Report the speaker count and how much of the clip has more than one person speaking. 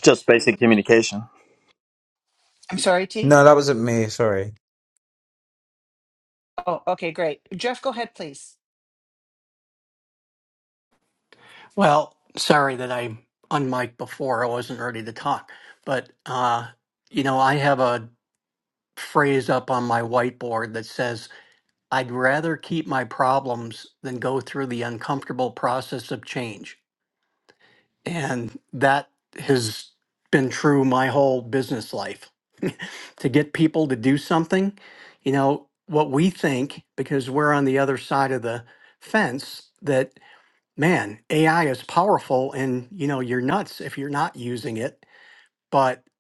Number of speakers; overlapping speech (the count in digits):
4, under 1%